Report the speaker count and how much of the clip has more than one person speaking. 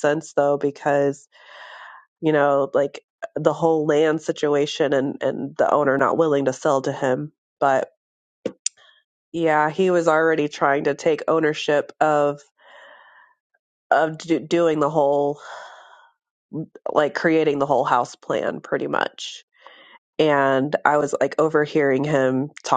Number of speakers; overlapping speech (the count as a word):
one, no overlap